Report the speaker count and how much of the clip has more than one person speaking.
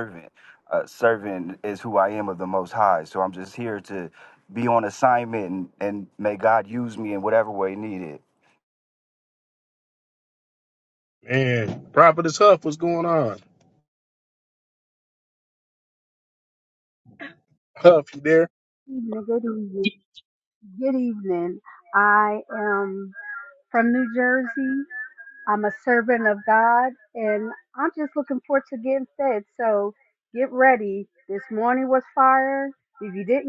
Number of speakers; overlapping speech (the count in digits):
3, no overlap